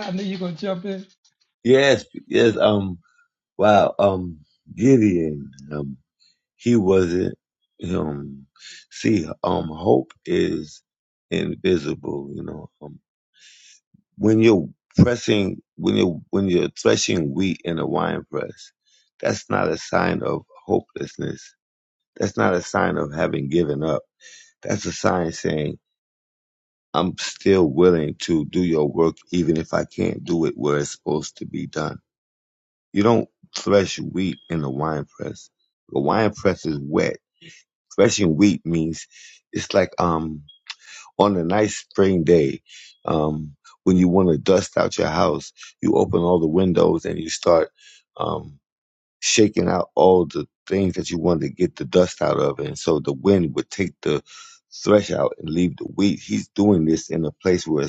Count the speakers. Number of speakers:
2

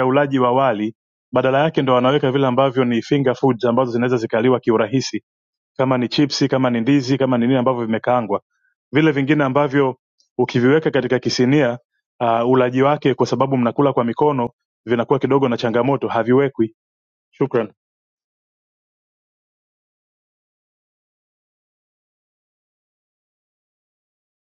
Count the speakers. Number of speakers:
1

